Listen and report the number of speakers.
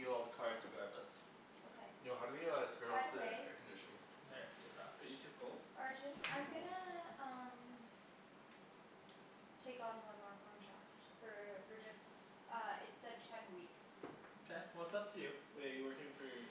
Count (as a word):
four